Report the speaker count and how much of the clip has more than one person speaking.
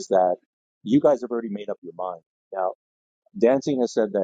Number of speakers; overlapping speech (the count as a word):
one, no overlap